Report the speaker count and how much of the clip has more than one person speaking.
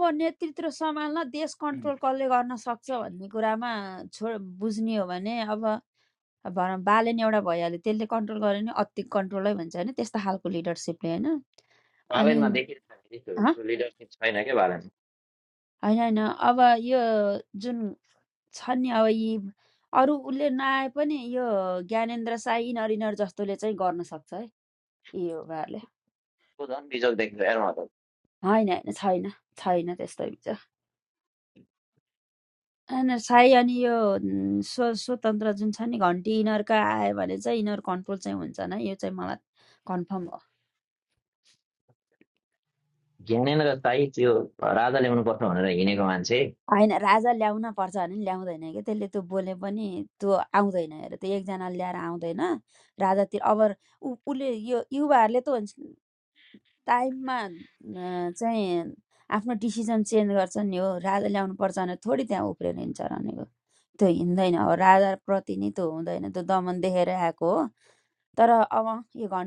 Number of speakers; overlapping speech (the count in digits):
2, under 1%